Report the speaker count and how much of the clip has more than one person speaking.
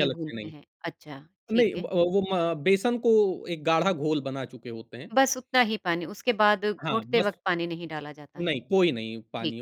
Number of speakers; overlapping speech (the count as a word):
two, about 17%